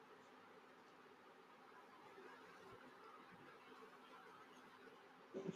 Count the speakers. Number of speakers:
0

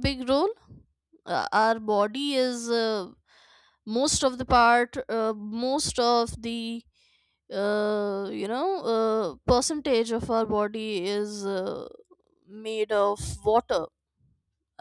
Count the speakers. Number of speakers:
1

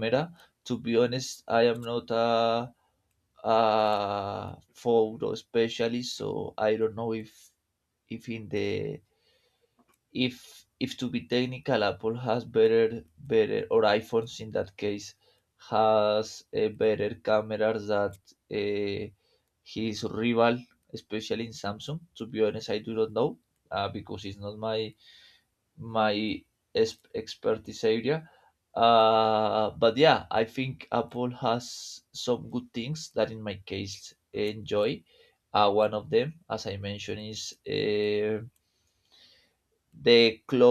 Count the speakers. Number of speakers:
1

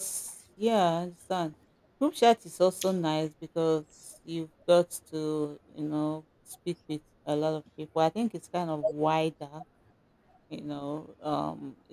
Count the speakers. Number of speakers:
1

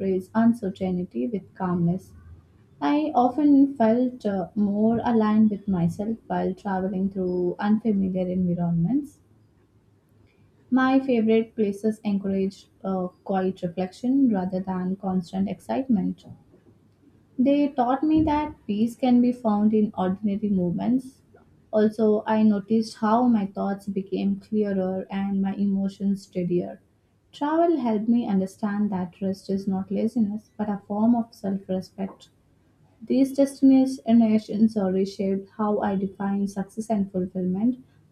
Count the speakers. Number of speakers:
1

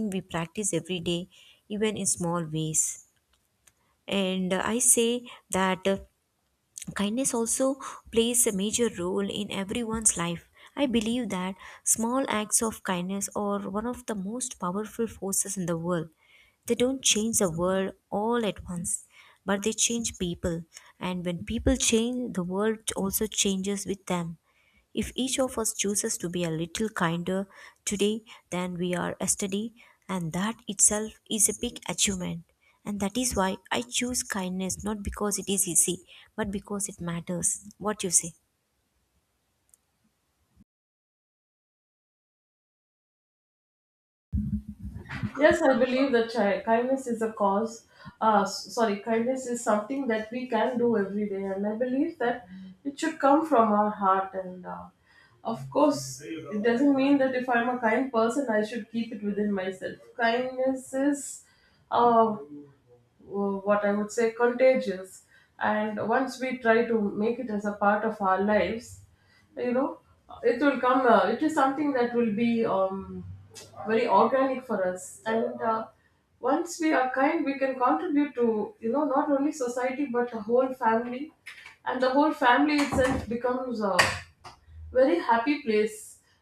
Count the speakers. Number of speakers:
2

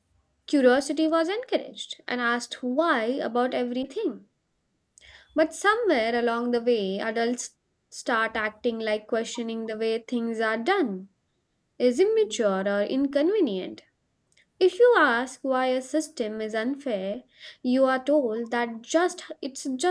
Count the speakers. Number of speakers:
1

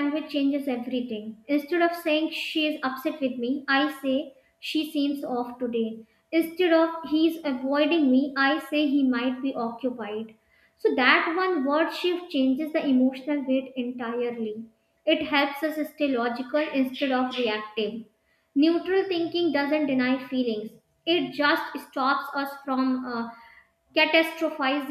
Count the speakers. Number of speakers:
1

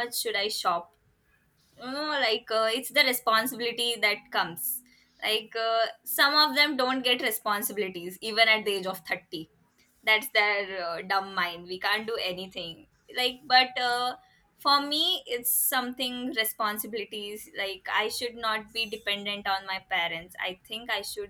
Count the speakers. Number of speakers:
1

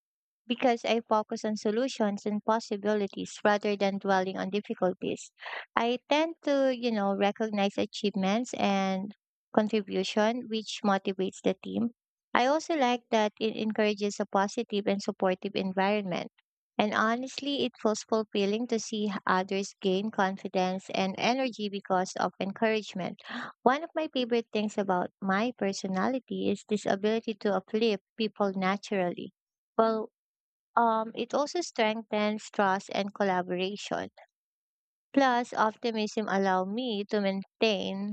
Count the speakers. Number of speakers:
1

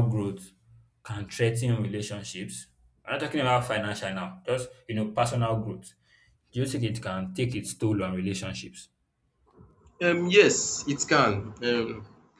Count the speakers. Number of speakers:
2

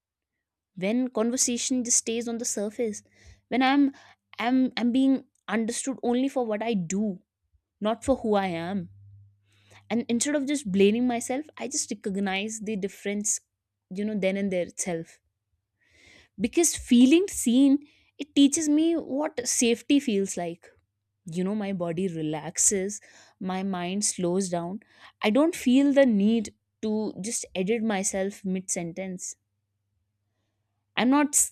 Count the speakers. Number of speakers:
1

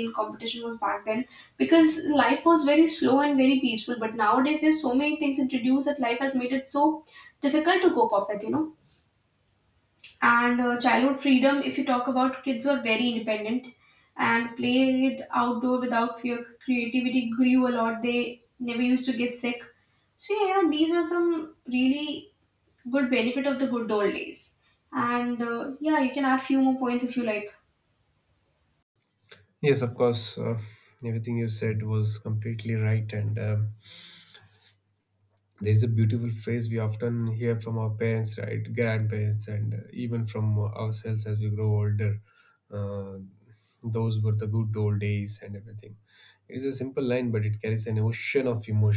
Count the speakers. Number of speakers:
2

